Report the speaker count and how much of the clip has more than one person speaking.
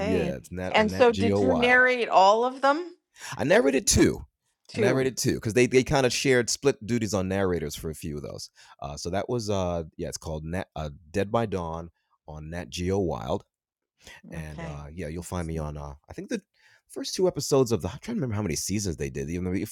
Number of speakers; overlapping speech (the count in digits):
2, about 11%